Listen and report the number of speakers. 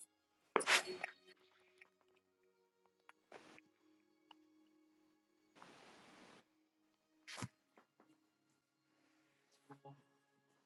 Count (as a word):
zero